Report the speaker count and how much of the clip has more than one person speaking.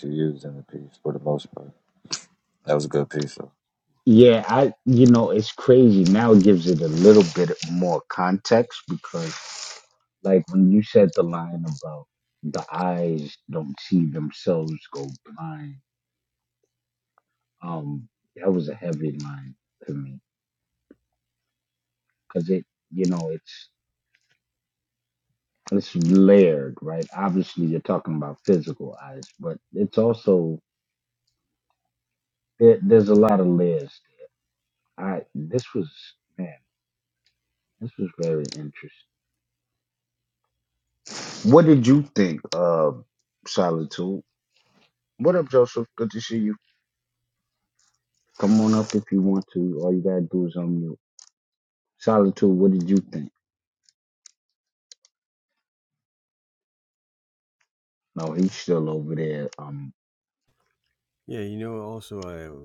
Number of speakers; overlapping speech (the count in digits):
3, no overlap